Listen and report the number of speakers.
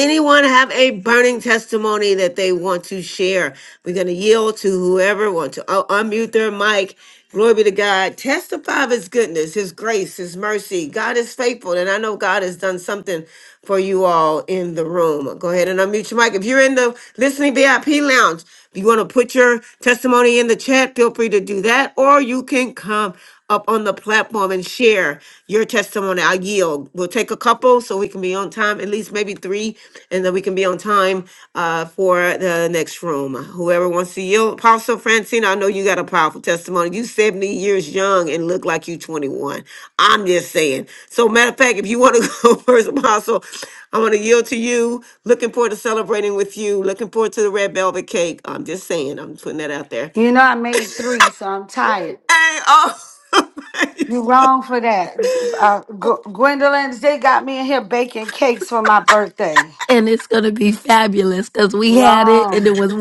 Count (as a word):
three